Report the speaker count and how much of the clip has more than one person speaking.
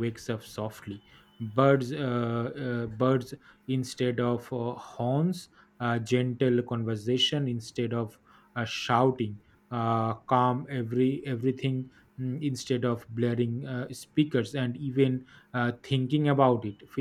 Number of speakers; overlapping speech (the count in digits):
1, no overlap